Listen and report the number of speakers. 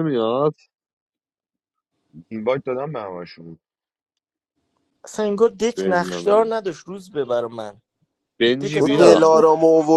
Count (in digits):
4